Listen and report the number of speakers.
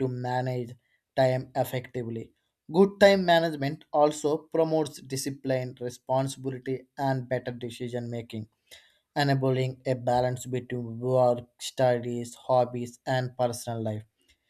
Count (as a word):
one